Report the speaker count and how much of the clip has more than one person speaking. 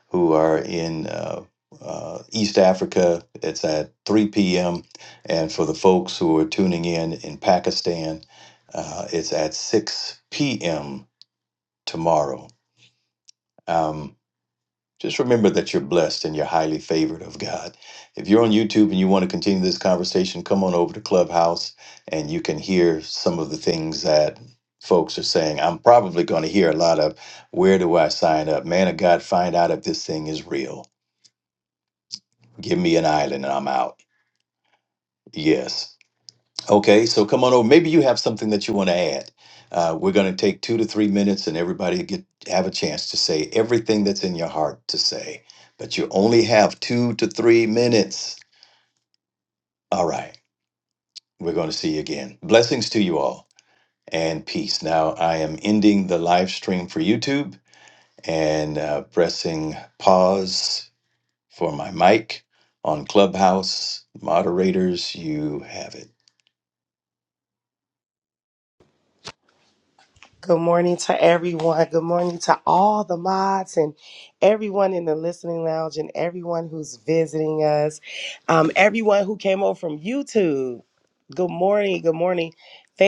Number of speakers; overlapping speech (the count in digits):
2, no overlap